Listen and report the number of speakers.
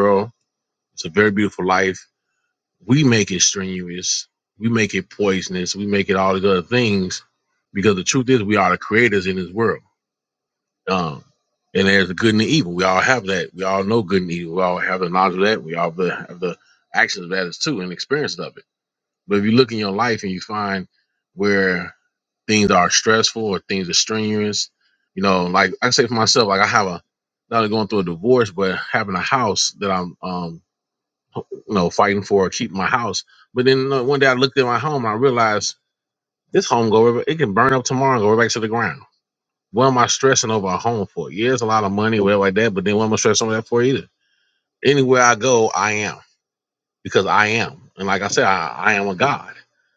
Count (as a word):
one